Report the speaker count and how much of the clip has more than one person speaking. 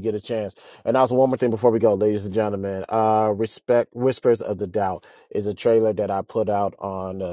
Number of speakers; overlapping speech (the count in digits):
1, no overlap